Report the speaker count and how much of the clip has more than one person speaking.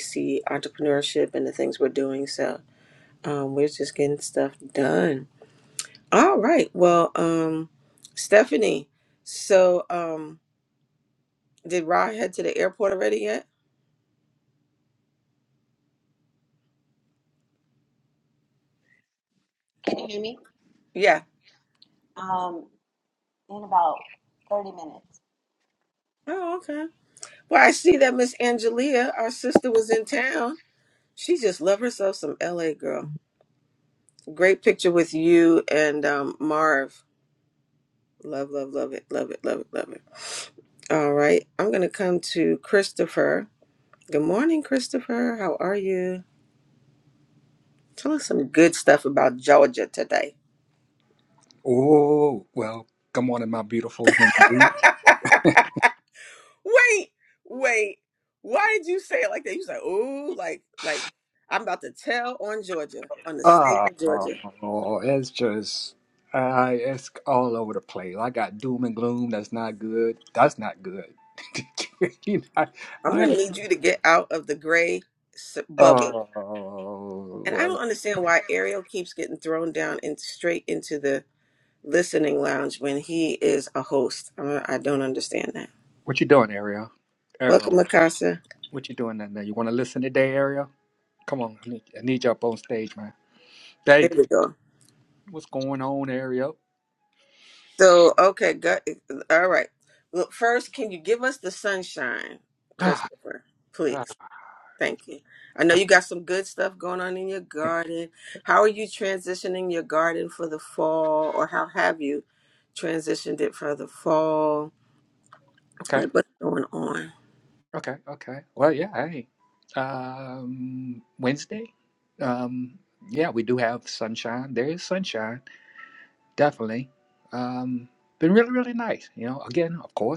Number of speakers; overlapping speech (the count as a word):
three, about 2%